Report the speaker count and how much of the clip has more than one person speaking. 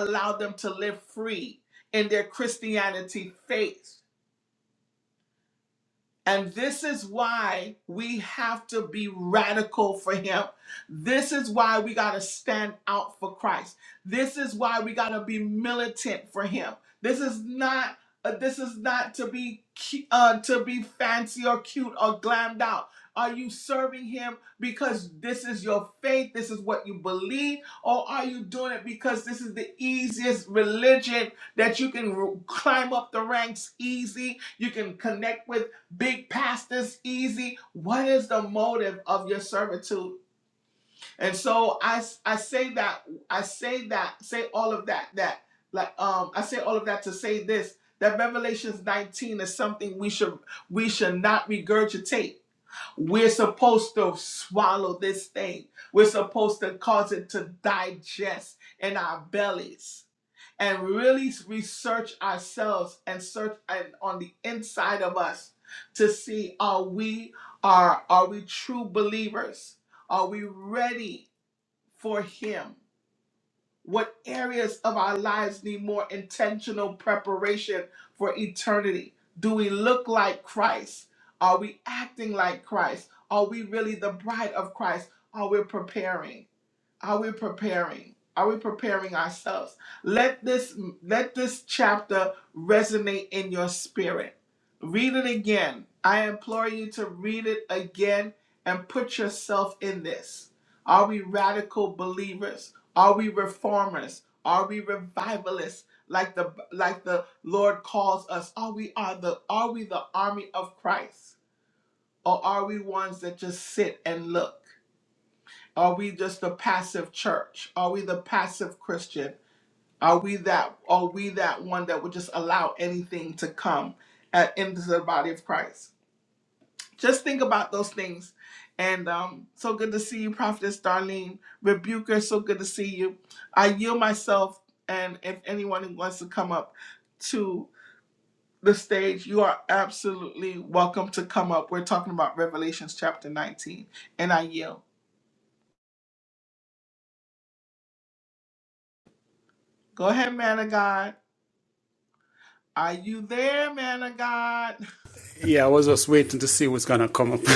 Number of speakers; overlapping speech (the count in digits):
2, no overlap